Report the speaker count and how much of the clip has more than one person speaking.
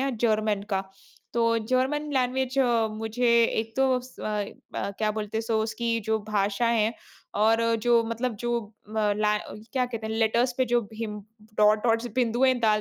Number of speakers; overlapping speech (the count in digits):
1, no overlap